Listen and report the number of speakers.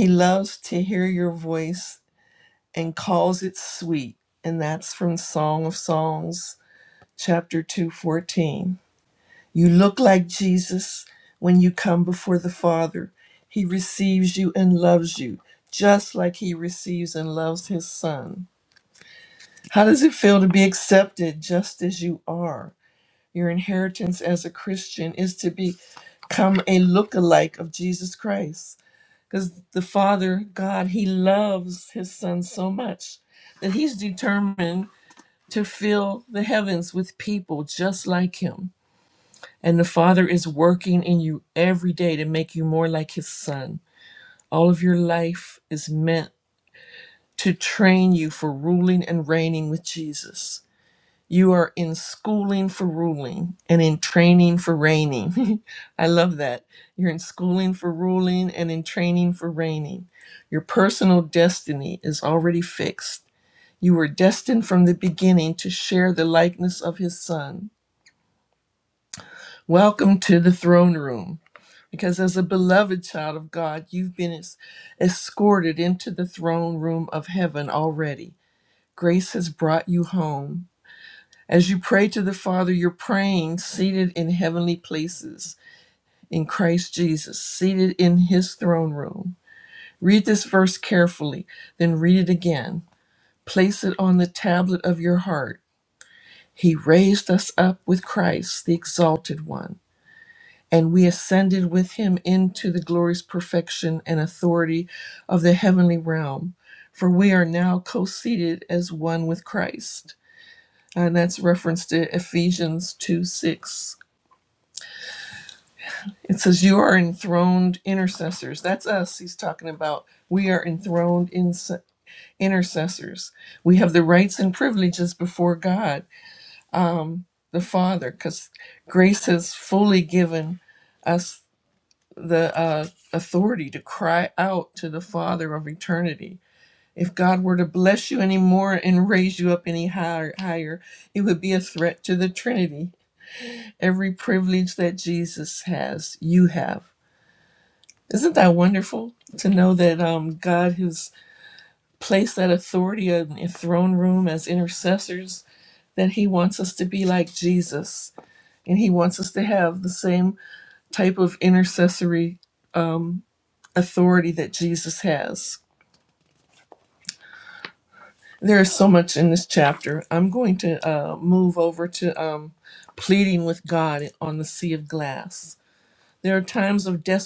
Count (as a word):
one